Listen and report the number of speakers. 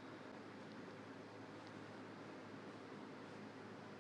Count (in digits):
0